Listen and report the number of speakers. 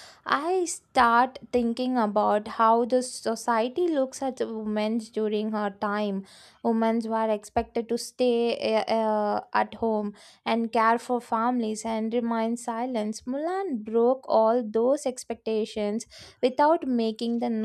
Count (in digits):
1